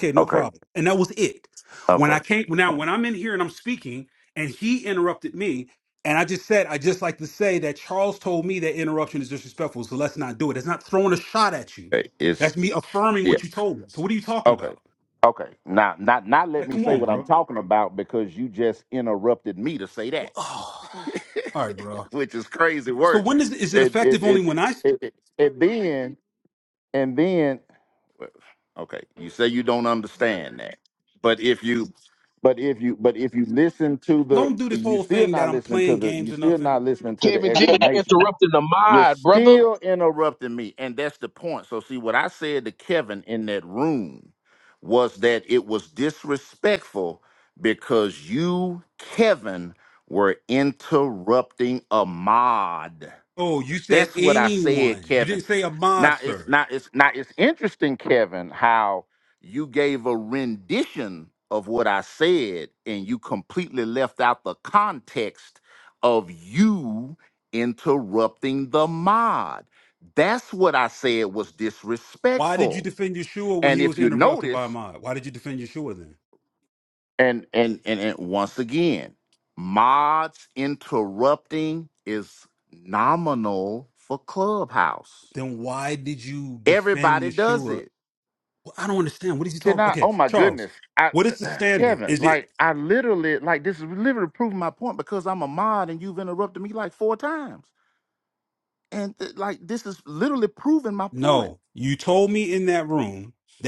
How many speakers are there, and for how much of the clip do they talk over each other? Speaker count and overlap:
3, about 12%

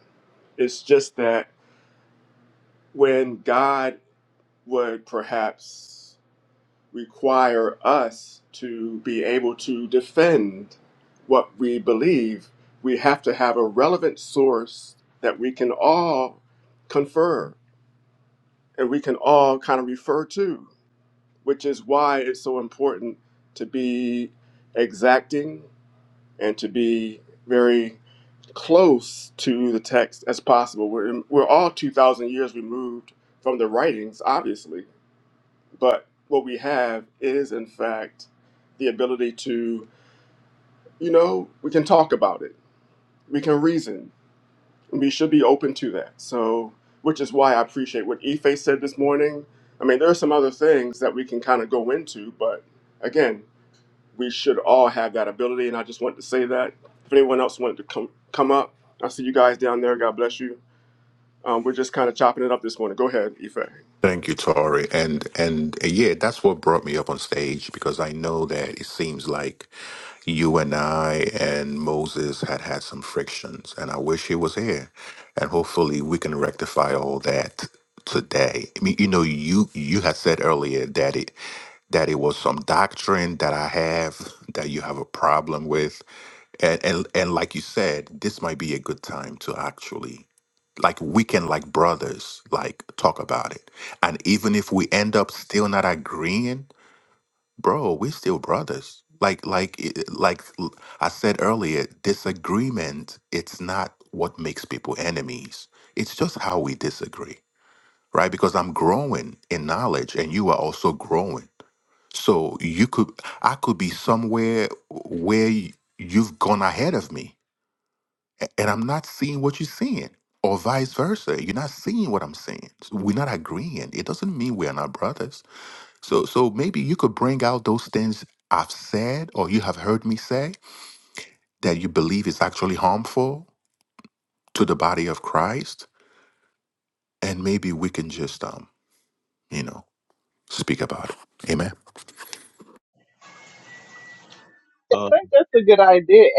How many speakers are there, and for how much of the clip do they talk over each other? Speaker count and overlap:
3, no overlap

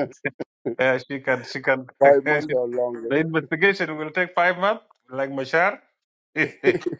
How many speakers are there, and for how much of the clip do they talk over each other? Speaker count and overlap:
2, about 4%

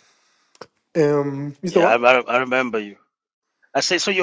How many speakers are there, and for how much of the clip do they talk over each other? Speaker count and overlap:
2, about 9%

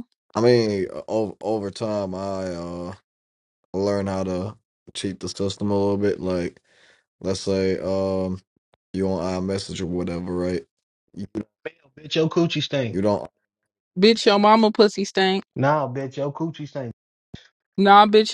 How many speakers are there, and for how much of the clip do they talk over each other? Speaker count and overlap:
3, under 1%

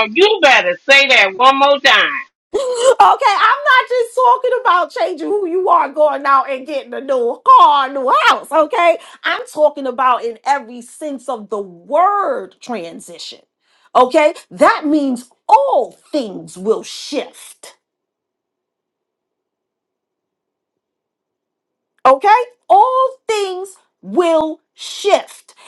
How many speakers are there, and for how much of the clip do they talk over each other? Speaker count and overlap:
2, no overlap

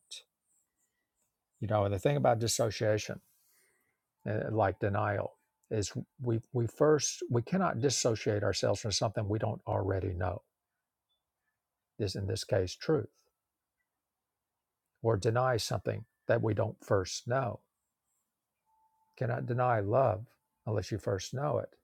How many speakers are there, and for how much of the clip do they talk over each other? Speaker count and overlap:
1, no overlap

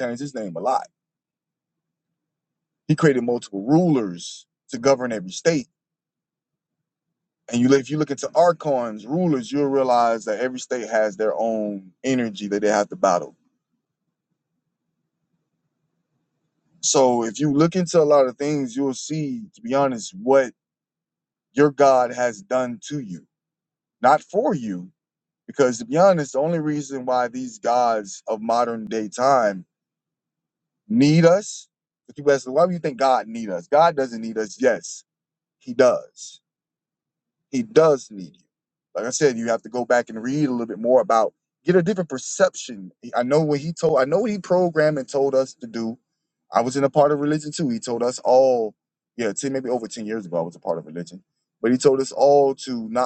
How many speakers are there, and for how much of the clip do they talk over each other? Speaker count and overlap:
1, no overlap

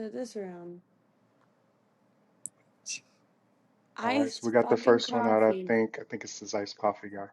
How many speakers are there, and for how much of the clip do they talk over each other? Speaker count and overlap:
2, about 18%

